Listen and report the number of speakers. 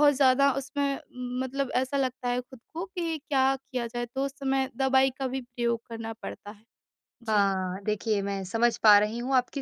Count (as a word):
two